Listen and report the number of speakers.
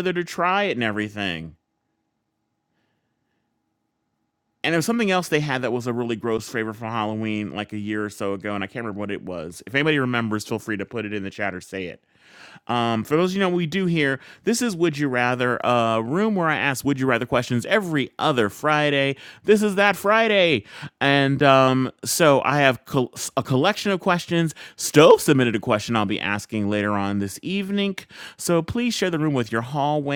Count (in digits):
1